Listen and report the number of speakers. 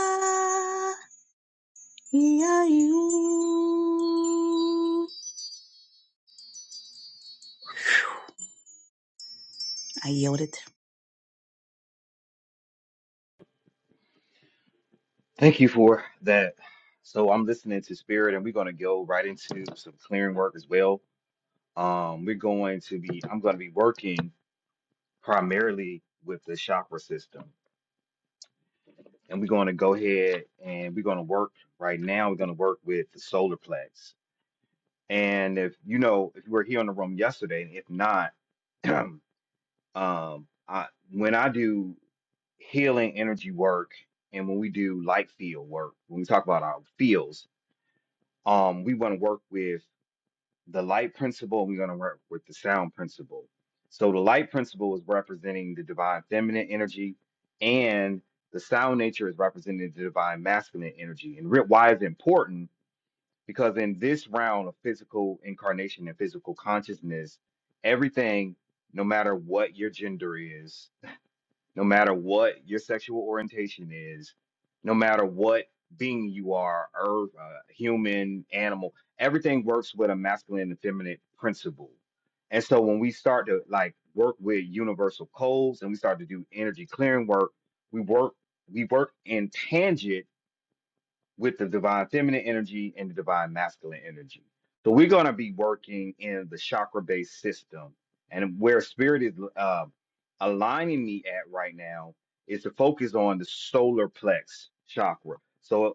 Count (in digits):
2